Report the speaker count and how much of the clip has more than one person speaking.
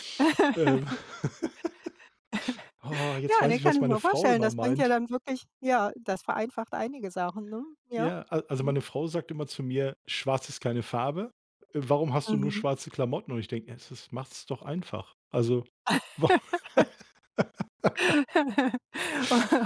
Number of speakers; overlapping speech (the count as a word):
two, about 12%